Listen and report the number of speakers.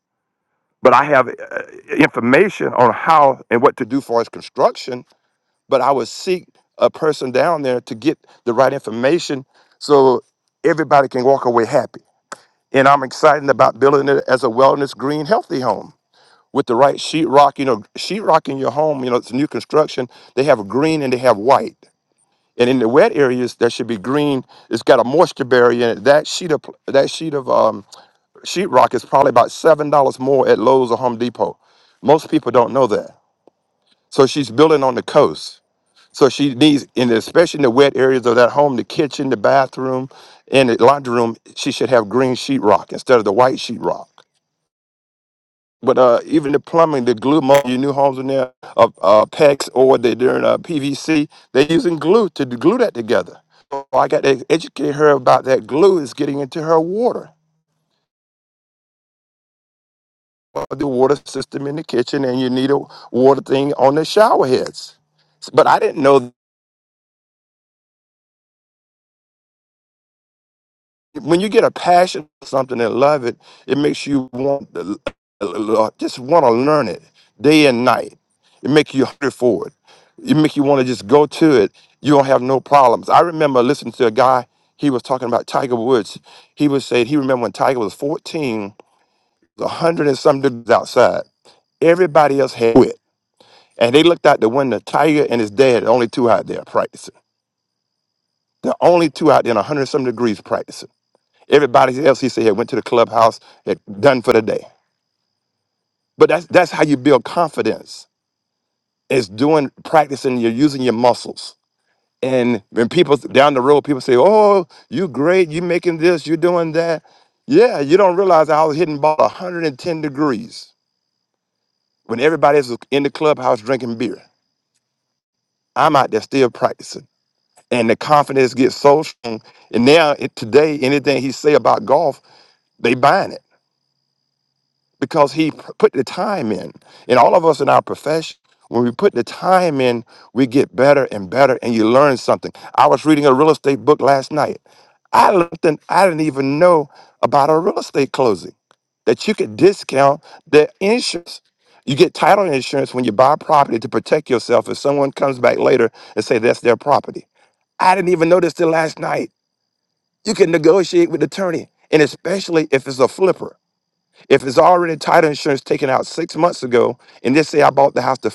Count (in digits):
1